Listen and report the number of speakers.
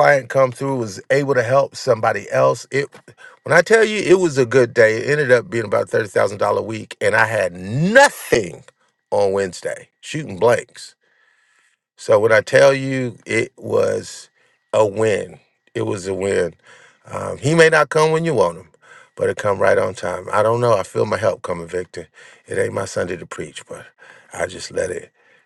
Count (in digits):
1